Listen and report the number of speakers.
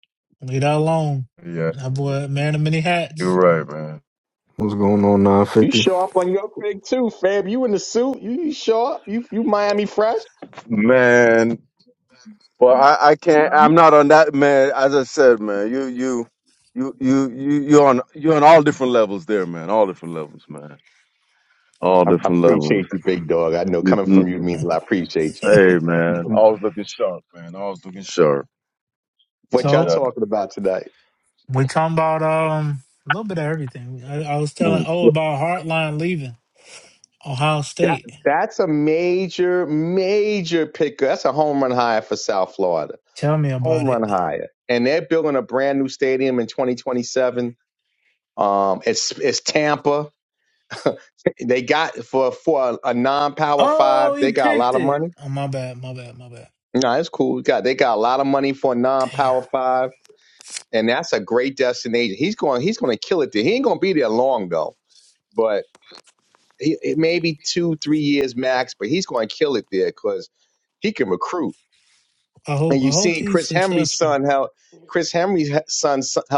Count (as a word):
four